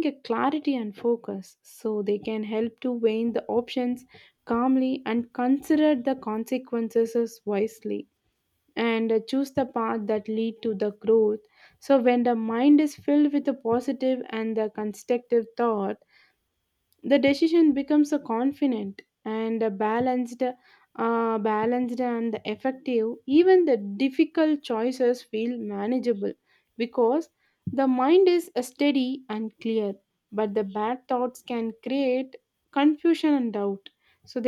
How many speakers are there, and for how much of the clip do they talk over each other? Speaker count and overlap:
one, no overlap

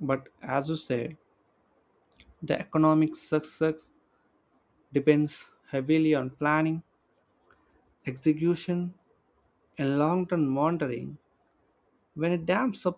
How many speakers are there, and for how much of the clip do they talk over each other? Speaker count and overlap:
one, no overlap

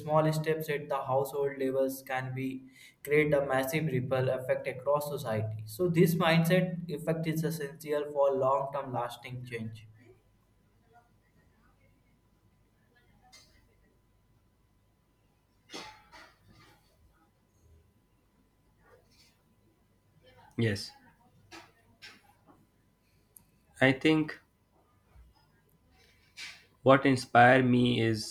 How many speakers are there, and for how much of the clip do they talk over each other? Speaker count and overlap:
two, no overlap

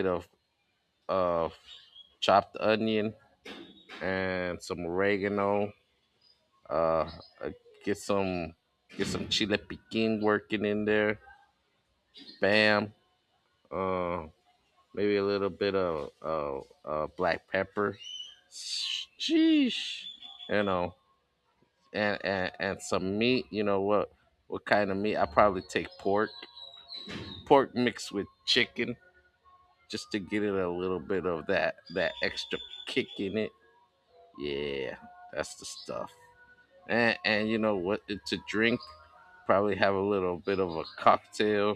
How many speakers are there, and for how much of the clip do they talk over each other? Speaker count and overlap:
one, no overlap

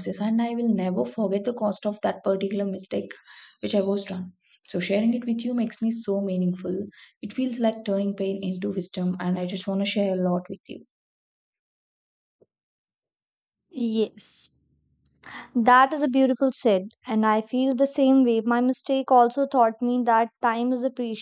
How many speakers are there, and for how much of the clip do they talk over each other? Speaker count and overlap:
two, no overlap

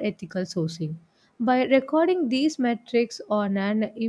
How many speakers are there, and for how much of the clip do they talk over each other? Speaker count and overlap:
one, no overlap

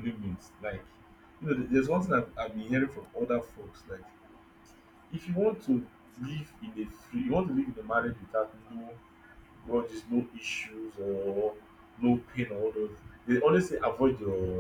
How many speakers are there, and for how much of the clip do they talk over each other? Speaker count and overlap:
one, no overlap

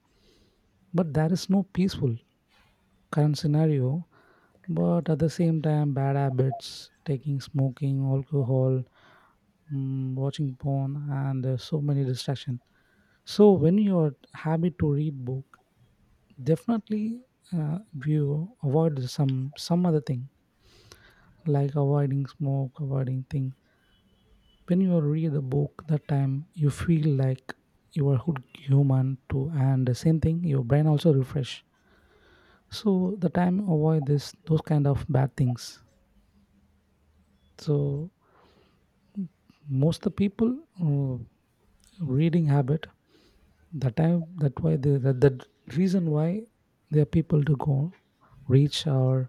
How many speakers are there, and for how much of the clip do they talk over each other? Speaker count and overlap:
one, no overlap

